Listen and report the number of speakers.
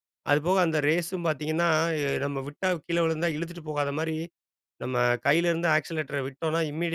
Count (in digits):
1